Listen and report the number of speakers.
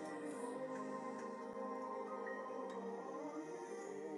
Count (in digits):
0